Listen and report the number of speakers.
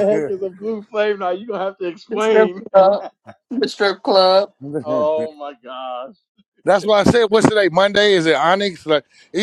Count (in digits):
3